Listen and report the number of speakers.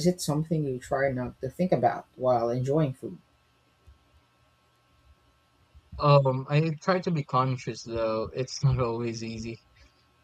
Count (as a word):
two